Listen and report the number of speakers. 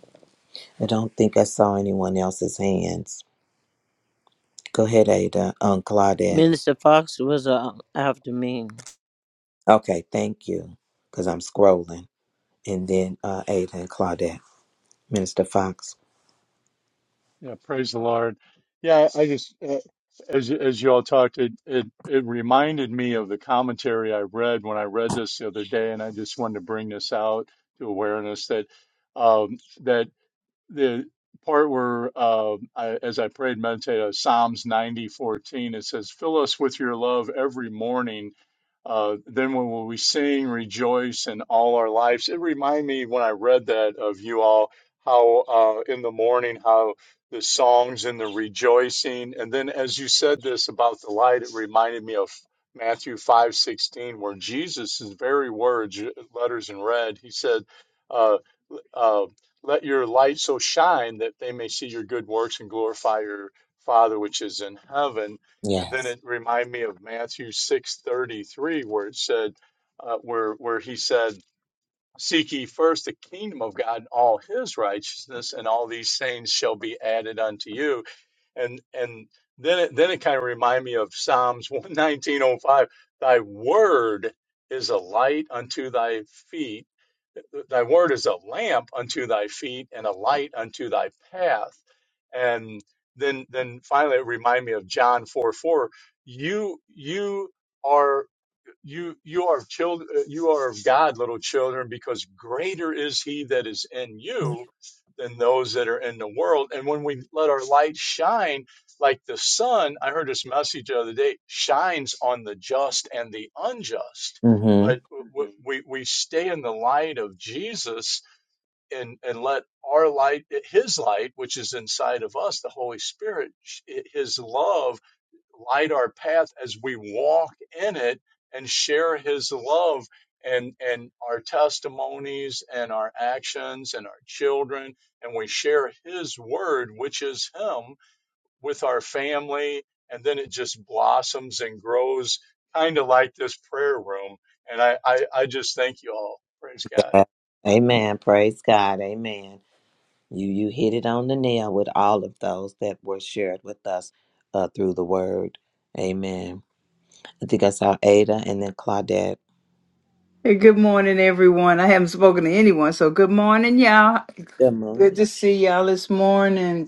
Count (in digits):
4